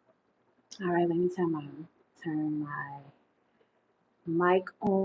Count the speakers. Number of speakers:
one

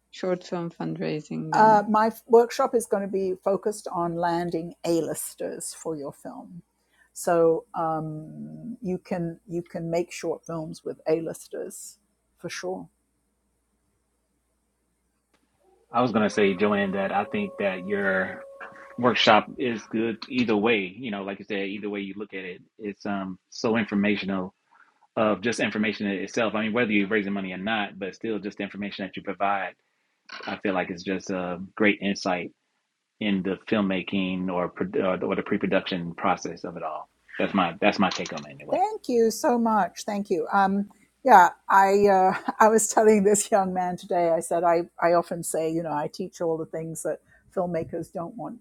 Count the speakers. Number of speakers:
three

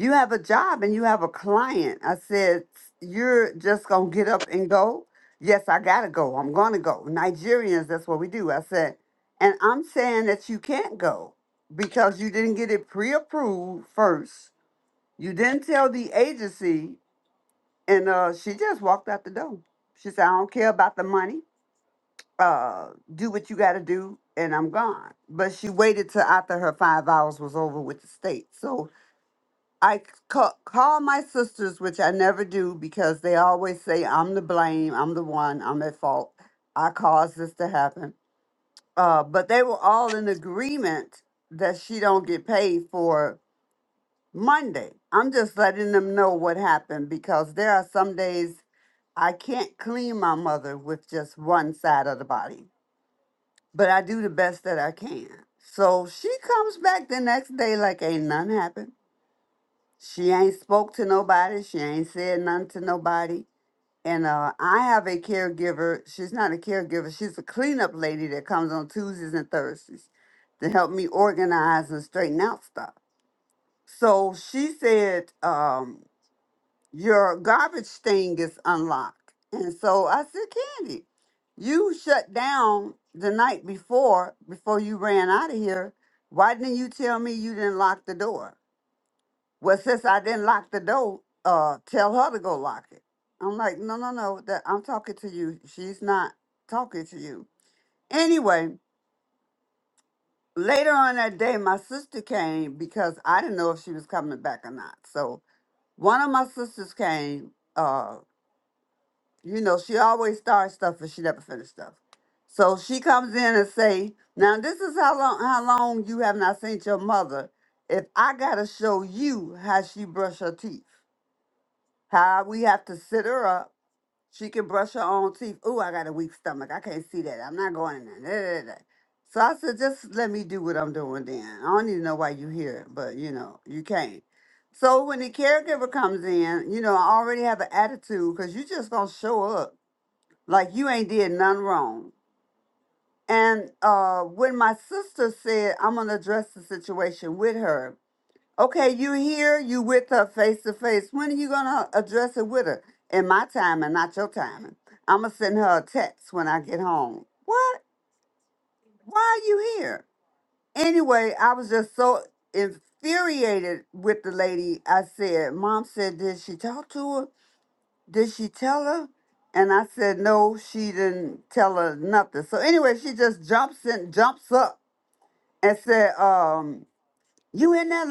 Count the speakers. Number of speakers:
one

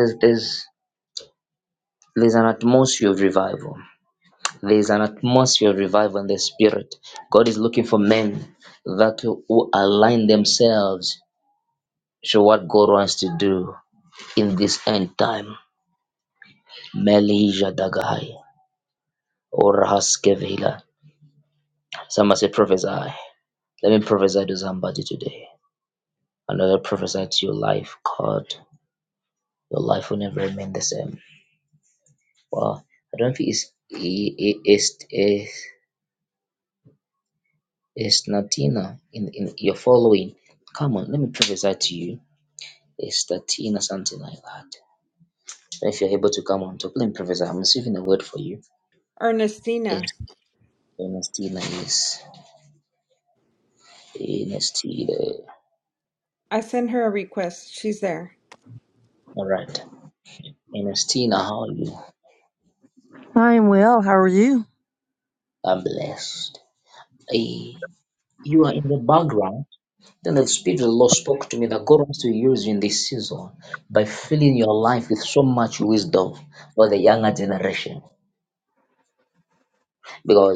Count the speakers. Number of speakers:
three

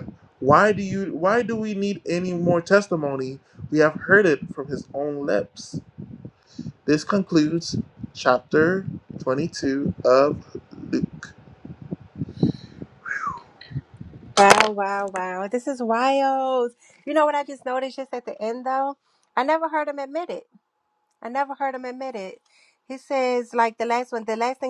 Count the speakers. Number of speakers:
two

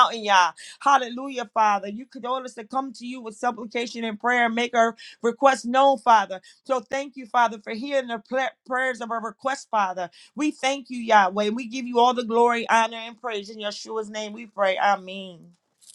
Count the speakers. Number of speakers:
one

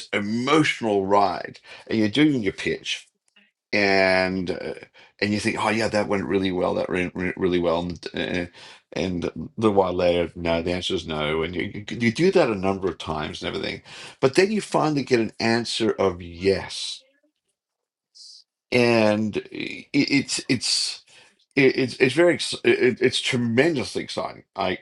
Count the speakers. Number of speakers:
one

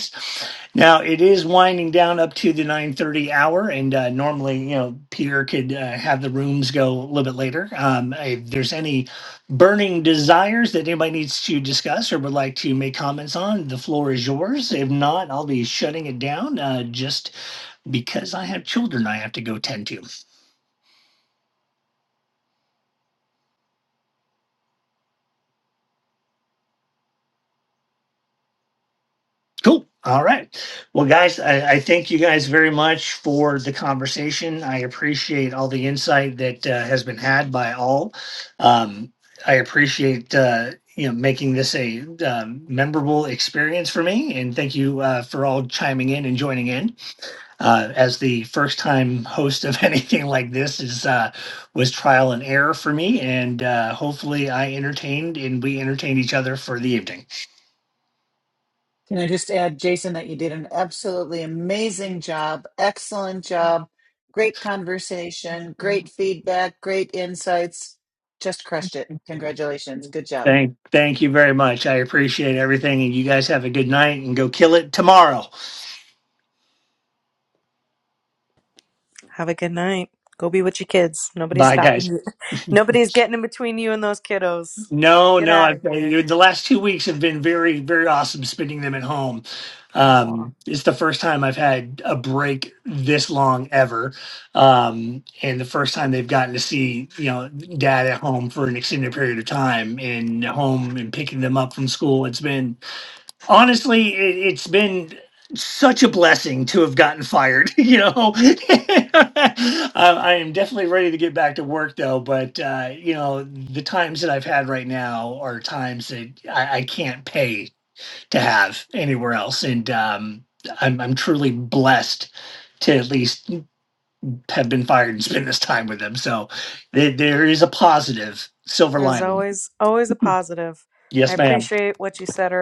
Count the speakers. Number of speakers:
three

